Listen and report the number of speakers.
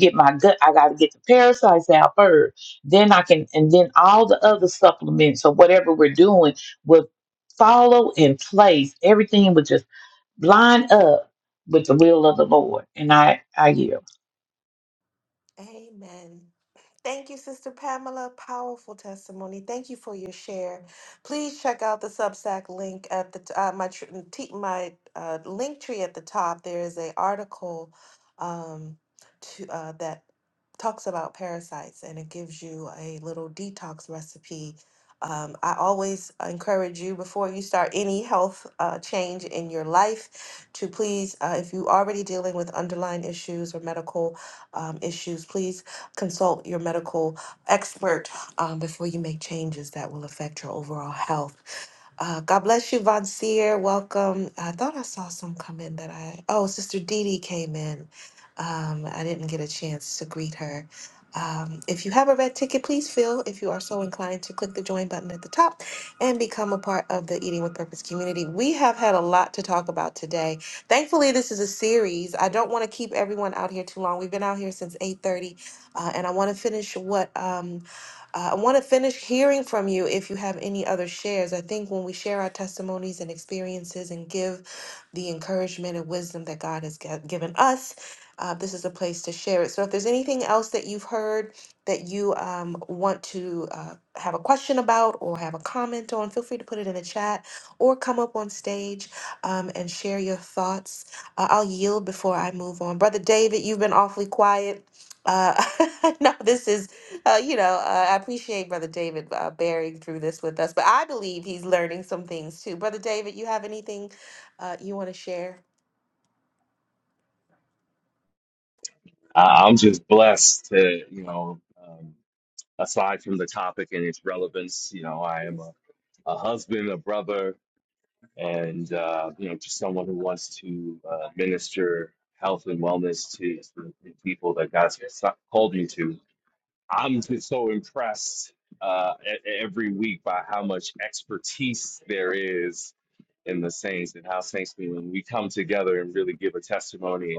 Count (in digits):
3